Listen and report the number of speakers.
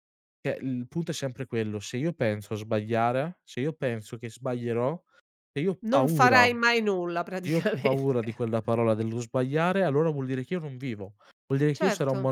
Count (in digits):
2